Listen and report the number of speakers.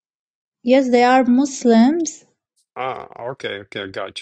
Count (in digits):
2